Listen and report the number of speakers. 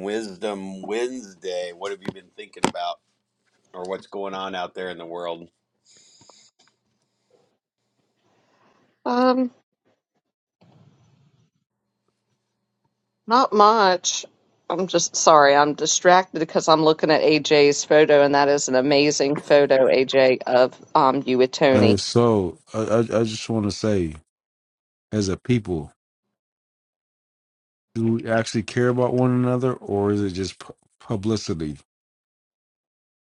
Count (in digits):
3